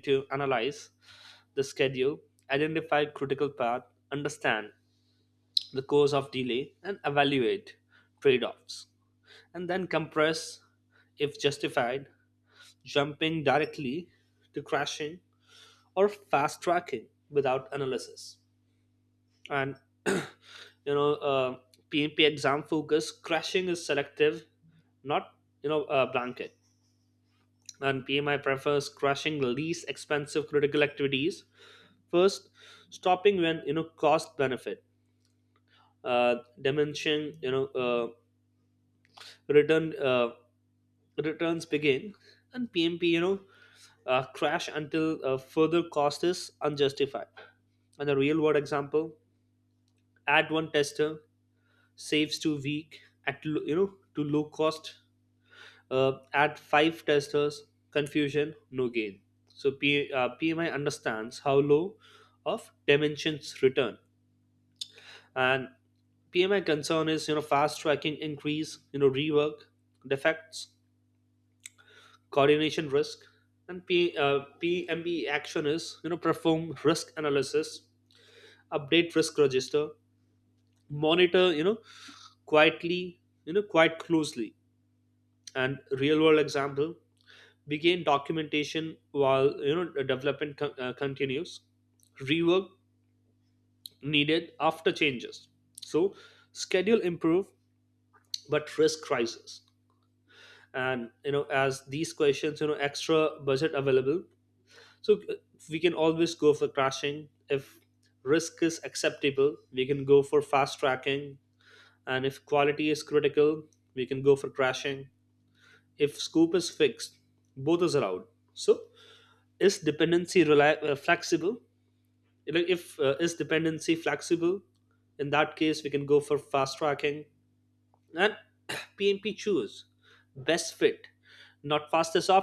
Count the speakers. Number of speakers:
1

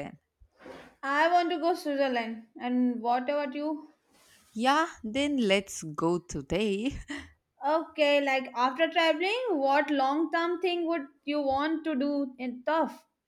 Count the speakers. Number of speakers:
2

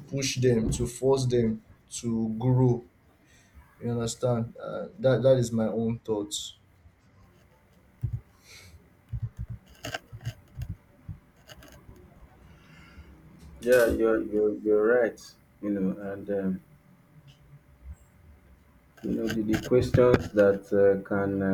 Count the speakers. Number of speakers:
2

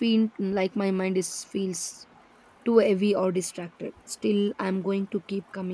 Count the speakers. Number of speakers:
1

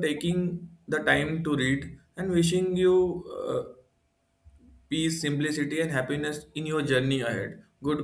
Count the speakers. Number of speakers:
1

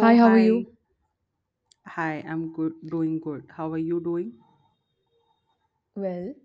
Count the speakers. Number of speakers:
2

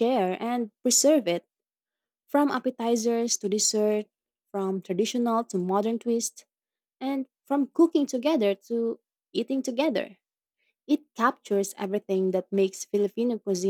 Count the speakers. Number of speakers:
1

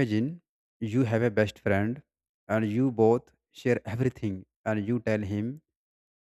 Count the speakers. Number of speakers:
1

